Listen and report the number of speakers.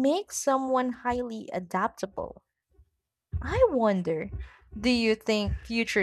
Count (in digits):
1